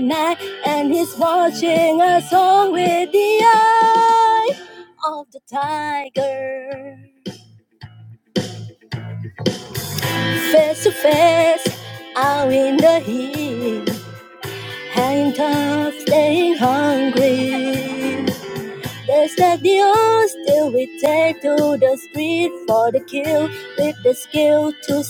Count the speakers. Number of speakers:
1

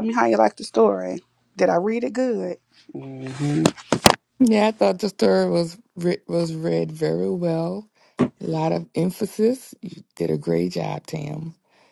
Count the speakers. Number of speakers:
2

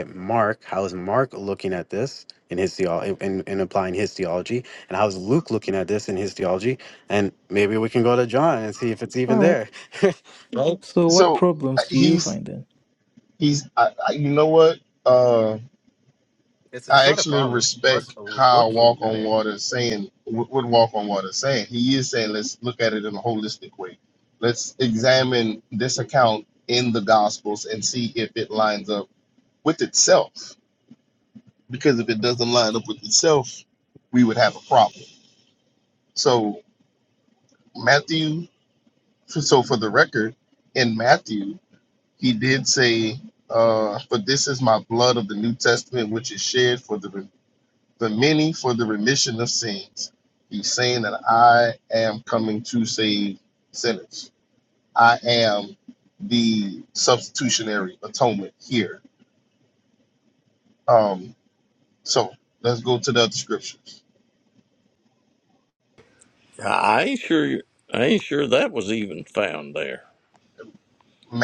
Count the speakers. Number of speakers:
4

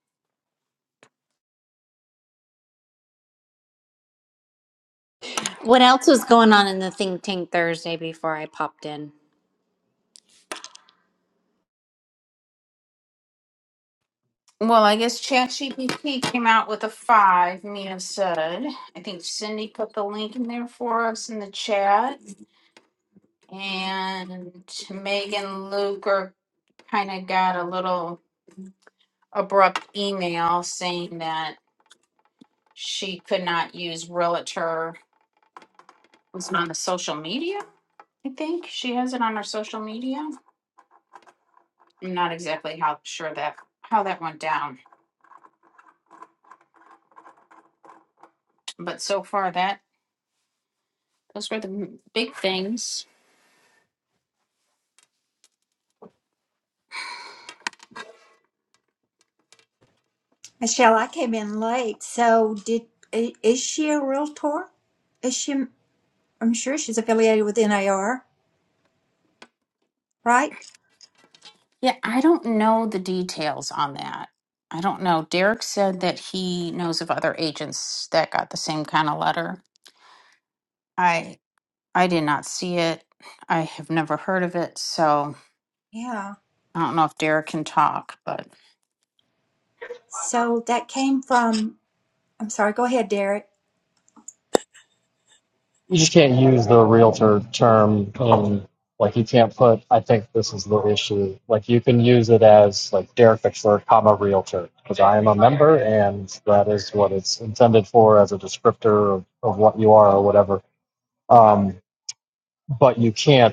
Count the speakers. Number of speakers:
4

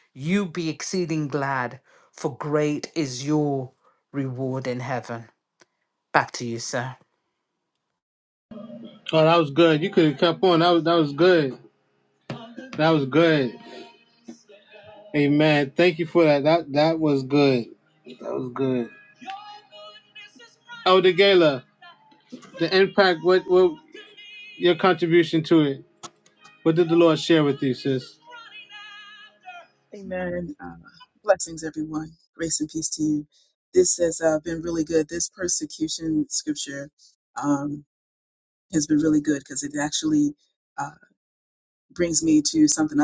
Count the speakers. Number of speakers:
3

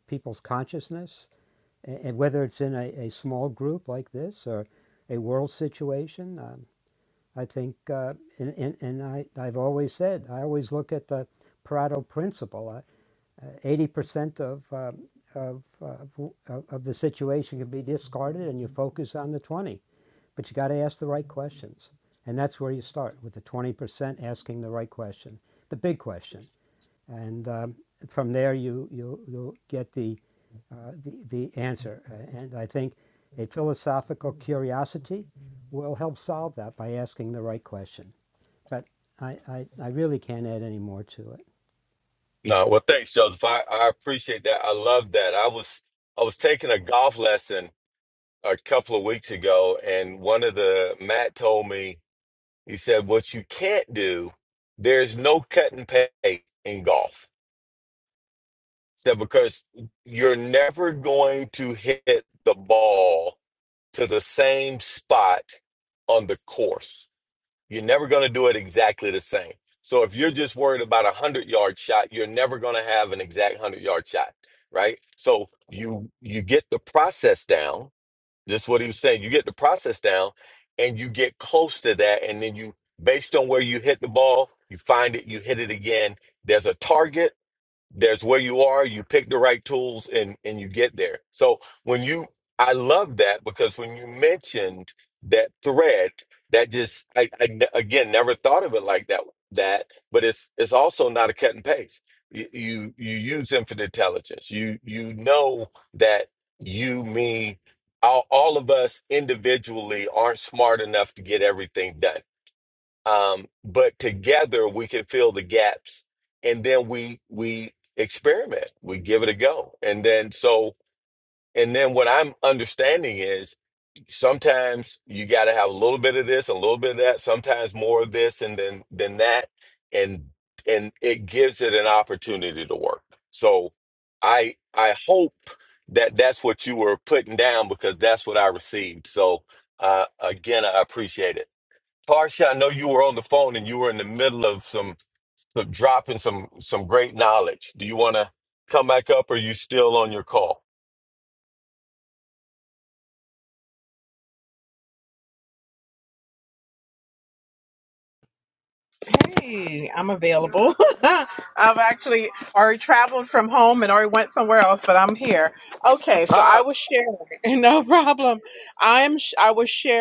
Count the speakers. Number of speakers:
3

